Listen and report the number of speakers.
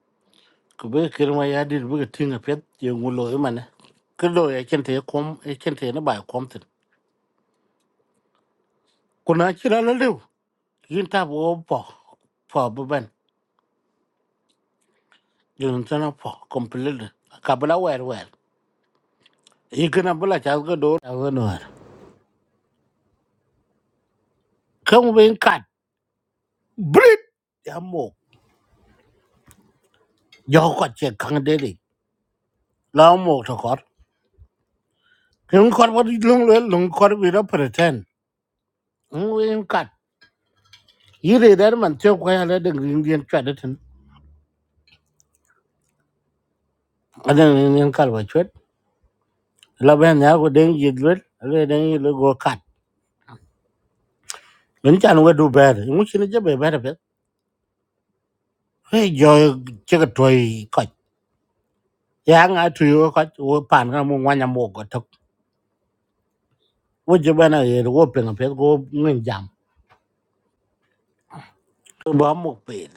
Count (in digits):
1